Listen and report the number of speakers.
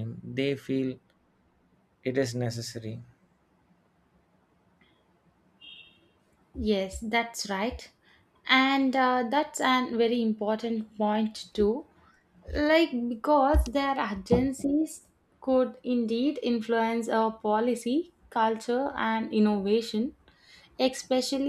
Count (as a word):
two